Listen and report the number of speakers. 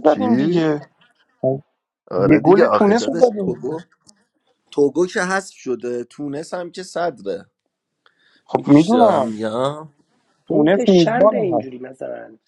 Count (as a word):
three